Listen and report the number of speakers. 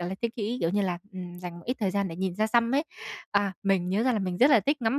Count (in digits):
1